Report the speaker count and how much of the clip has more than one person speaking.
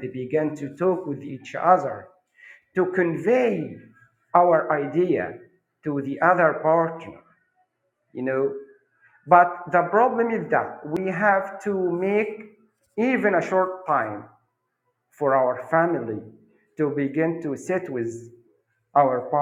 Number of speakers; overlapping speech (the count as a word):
one, no overlap